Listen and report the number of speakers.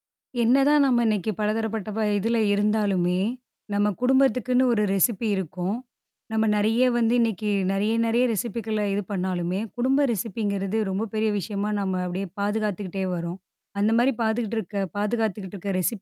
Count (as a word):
one